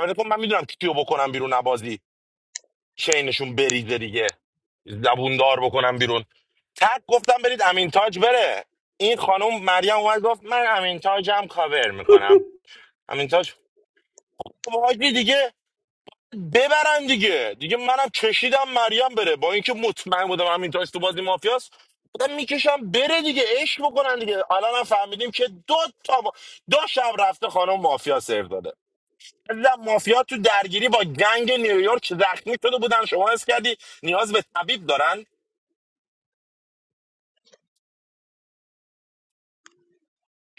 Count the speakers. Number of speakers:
one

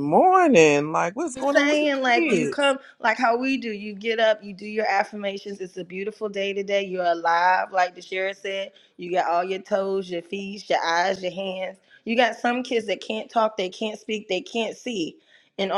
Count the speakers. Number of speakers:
two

